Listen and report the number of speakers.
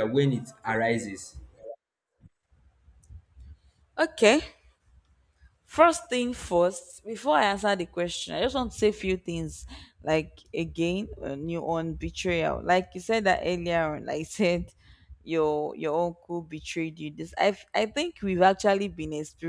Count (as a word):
two